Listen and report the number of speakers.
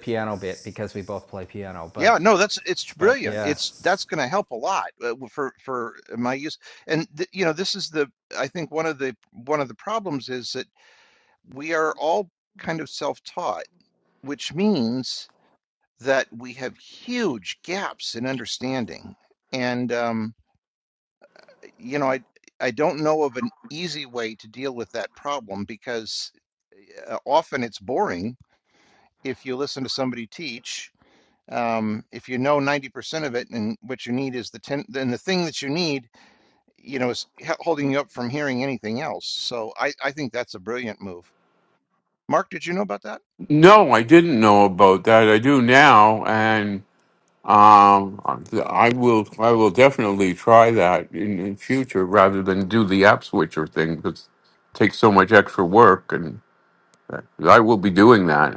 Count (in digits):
3